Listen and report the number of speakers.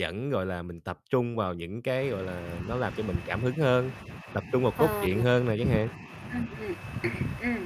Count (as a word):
two